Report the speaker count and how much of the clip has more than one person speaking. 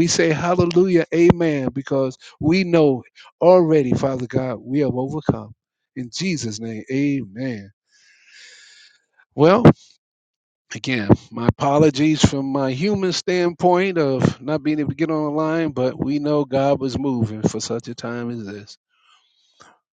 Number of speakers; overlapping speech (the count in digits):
1, no overlap